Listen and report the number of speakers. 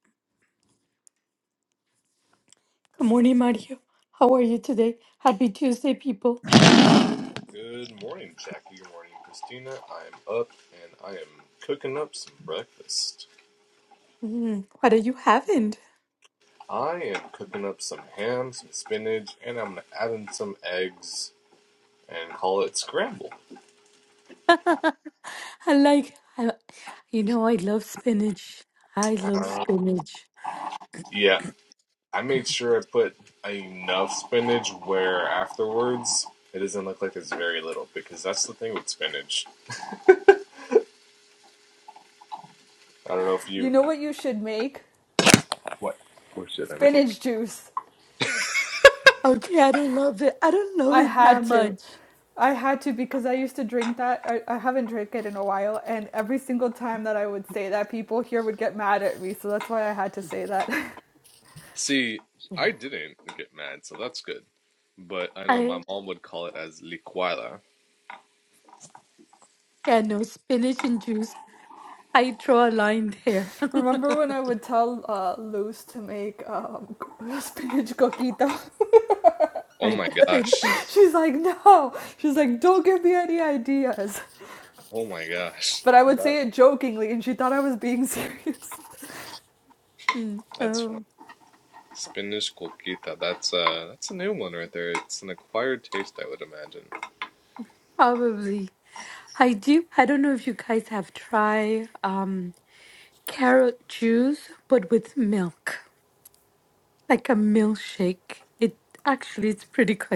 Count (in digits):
3